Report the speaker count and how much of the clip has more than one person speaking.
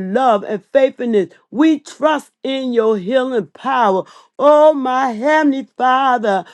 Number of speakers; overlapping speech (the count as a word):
one, no overlap